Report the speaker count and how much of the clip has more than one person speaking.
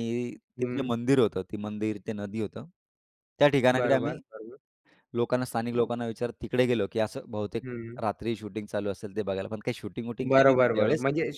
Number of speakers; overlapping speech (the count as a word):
two, about 14%